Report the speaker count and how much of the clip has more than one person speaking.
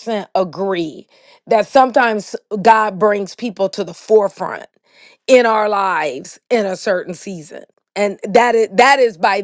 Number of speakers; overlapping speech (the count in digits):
1, no overlap